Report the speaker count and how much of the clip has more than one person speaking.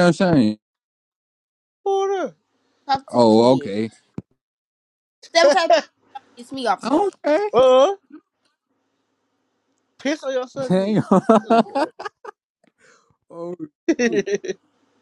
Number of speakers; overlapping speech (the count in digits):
3, about 8%